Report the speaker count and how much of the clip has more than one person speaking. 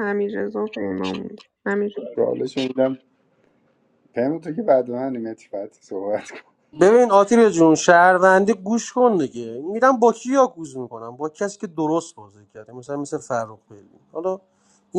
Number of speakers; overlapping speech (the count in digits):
3, no overlap